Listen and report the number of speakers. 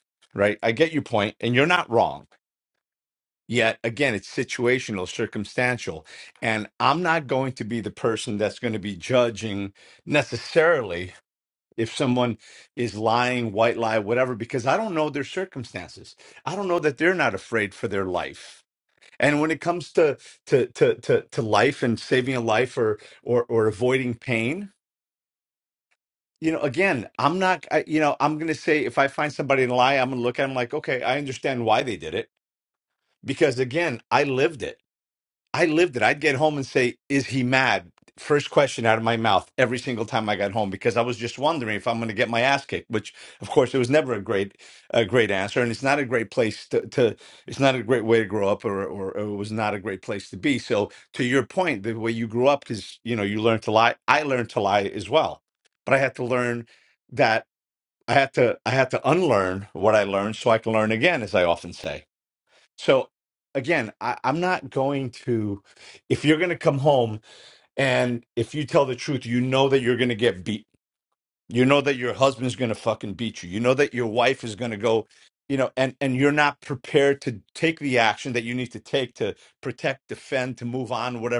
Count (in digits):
1